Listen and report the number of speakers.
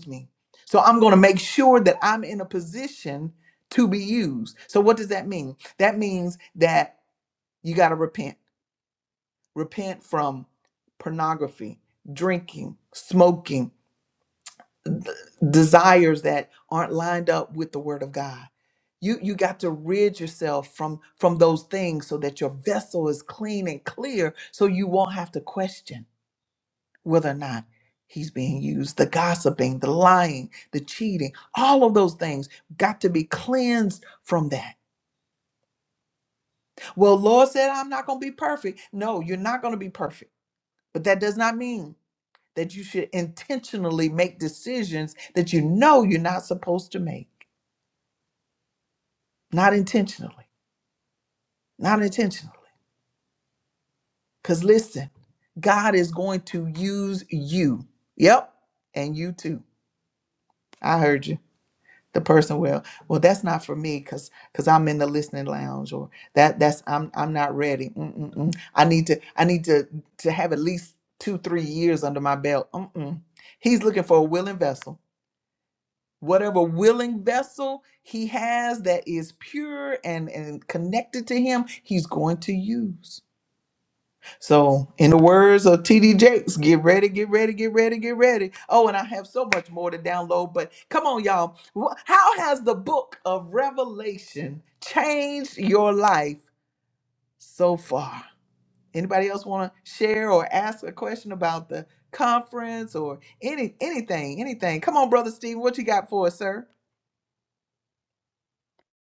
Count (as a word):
one